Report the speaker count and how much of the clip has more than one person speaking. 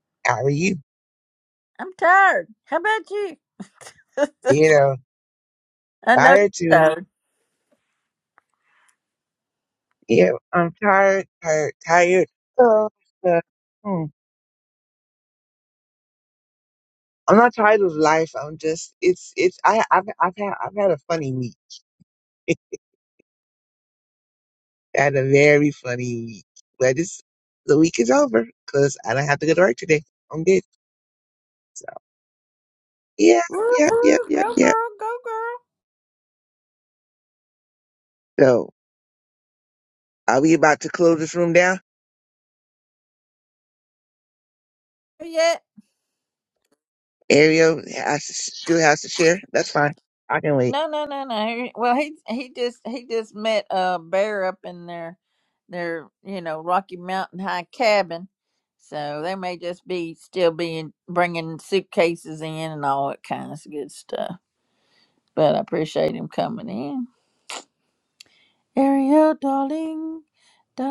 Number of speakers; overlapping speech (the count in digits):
2, about 2%